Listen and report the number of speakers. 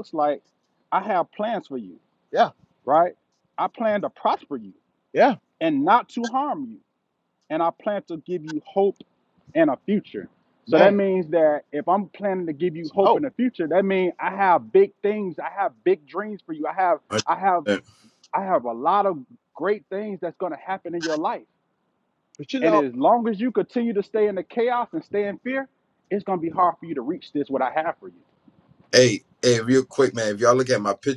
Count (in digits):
3